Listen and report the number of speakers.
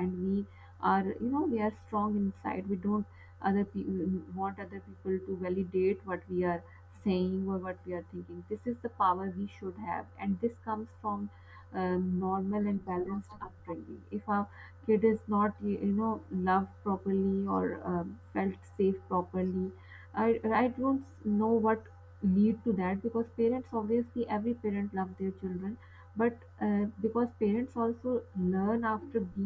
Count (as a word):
one